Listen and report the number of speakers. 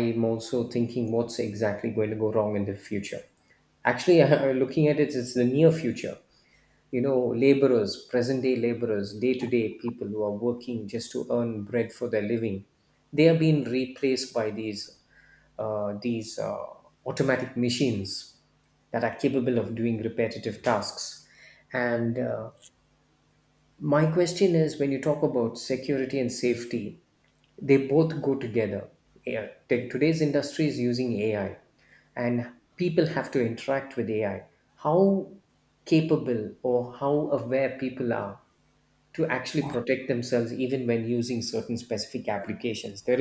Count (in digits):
1